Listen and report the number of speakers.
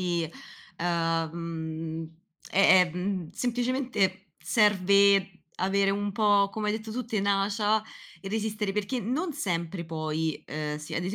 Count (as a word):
one